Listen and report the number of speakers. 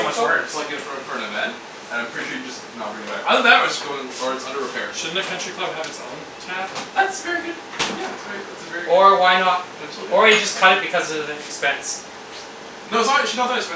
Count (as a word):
three